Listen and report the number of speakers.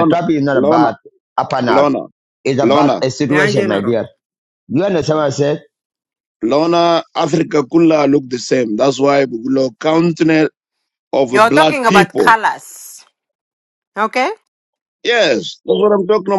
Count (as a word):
three